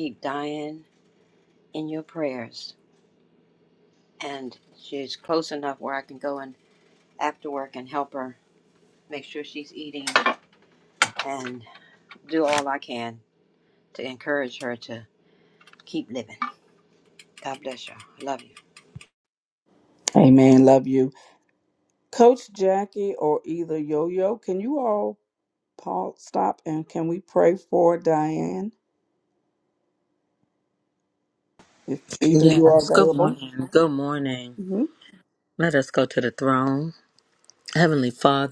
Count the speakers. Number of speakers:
3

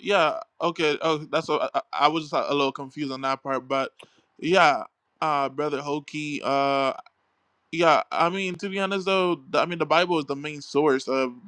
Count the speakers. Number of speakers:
1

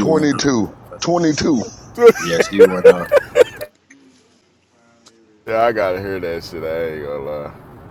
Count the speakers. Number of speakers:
3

